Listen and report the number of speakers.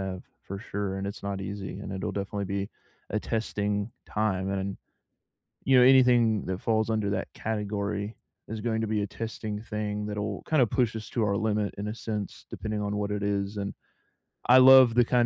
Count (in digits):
1